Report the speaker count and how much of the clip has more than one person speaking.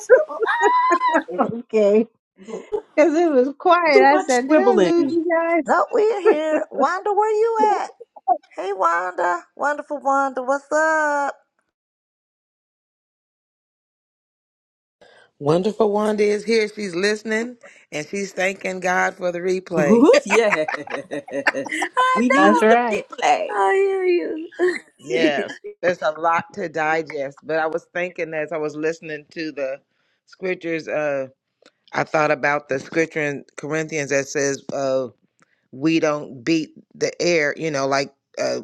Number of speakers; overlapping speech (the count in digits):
4, about 7%